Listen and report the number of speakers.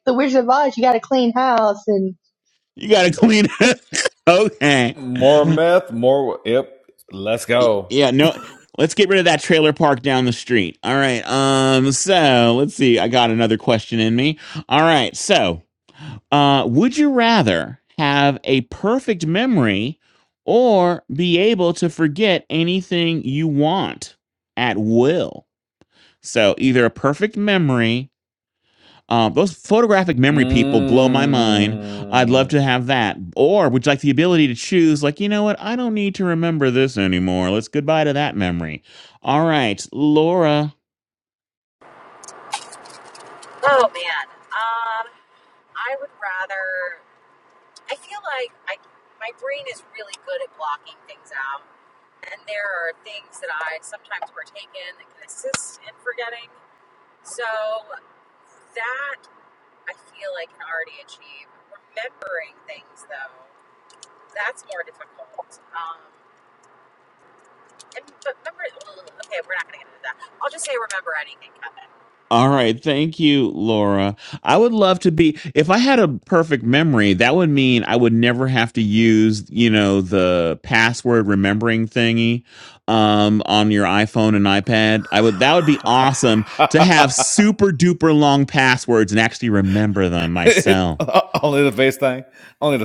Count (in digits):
4